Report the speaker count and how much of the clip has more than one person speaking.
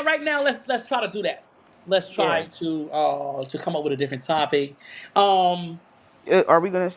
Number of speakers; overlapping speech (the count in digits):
2, about 4%